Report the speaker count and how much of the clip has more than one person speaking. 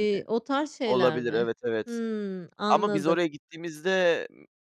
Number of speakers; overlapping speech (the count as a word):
two, about 24%